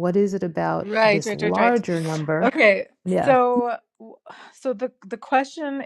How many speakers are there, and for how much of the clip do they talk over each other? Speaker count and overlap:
2, about 19%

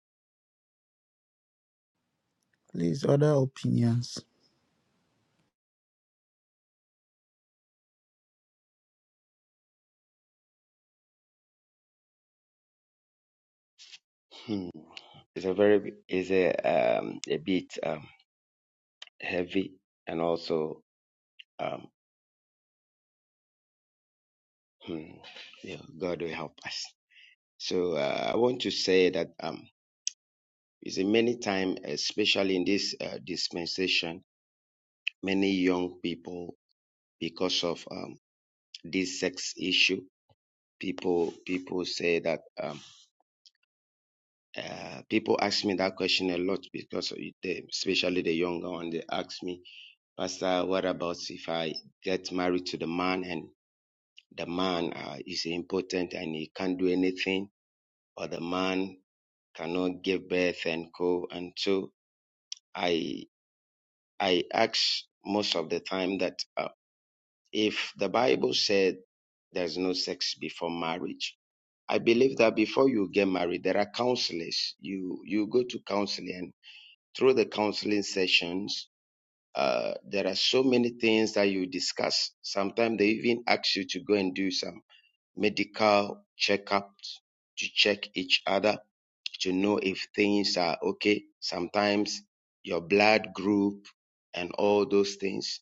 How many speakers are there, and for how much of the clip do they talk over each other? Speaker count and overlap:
2, no overlap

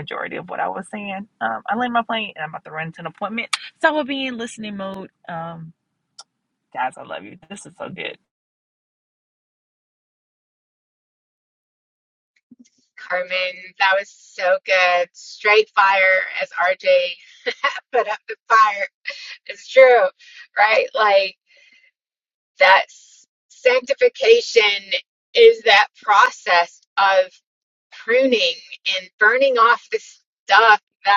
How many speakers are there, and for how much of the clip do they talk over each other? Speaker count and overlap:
2, no overlap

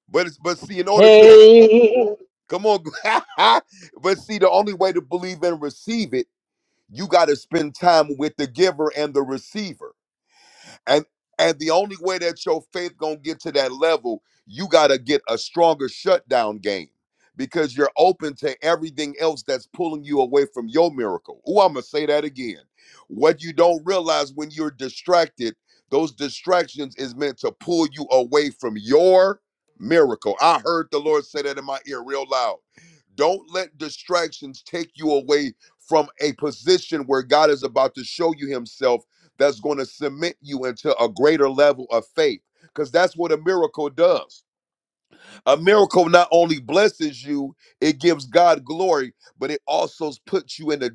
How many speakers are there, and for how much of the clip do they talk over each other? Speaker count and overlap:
2, about 1%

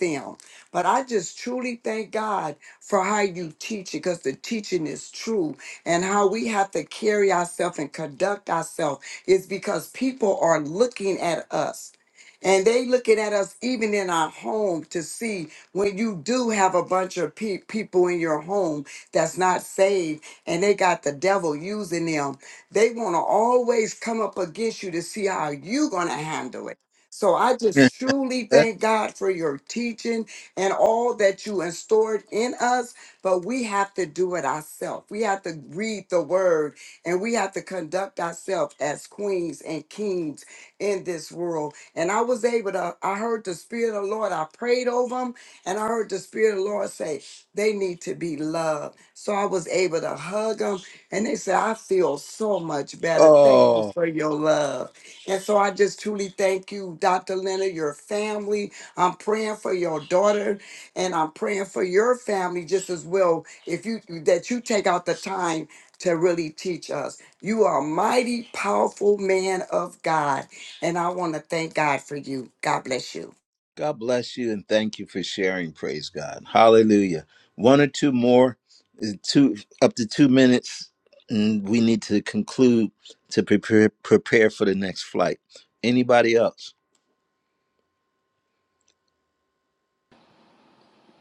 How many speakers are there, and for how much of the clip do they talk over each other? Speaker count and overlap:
2, about 1%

